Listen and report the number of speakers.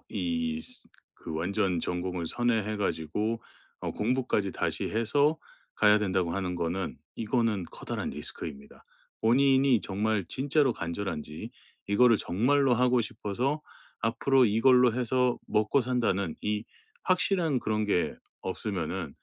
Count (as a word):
one